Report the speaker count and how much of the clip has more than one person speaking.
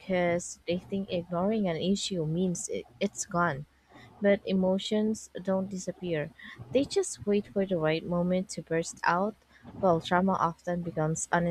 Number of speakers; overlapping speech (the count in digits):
1, no overlap